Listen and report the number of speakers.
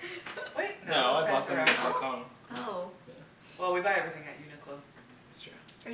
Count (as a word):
three